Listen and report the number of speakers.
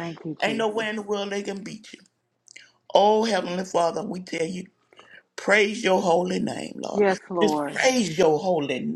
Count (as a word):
two